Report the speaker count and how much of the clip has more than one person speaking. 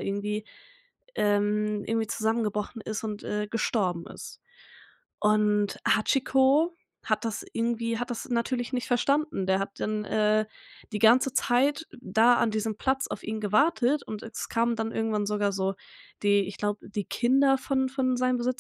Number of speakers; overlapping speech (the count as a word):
one, no overlap